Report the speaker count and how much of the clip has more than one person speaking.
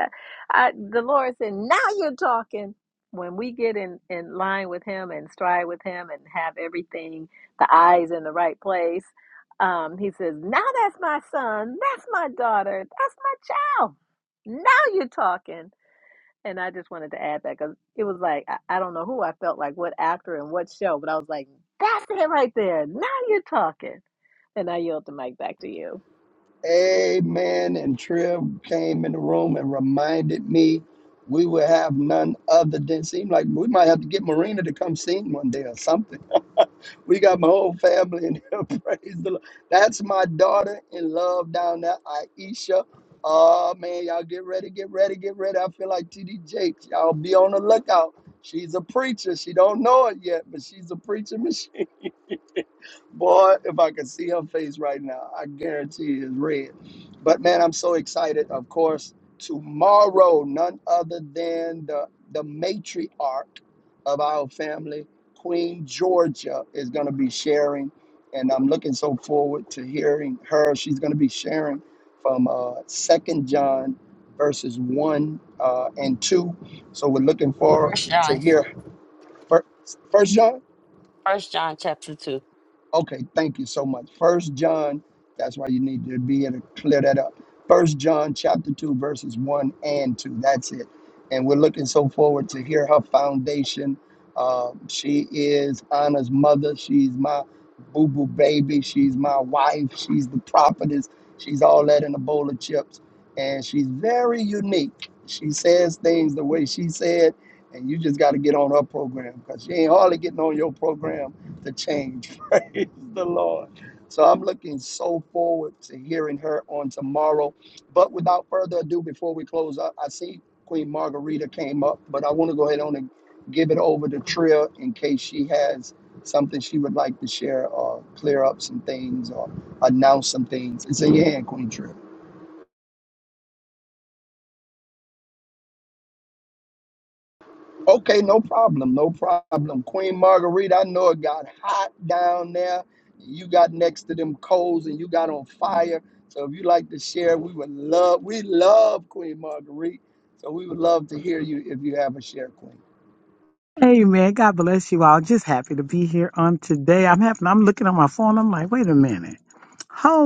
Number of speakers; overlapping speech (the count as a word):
four, under 1%